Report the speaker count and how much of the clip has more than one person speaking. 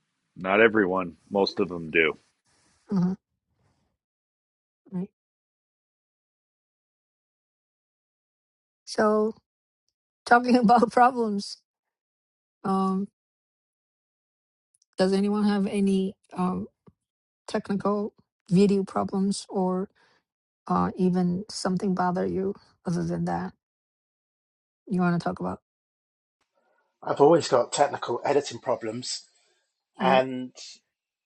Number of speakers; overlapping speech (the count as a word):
three, about 1%